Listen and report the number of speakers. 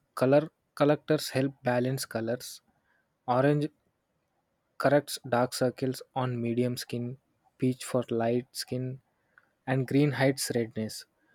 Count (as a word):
one